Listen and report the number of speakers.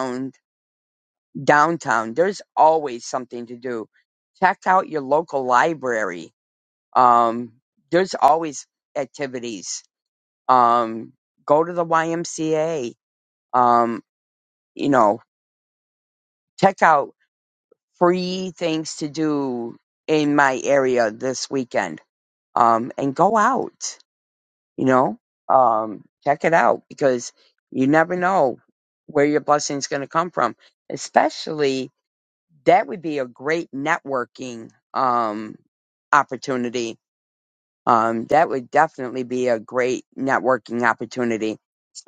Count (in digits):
1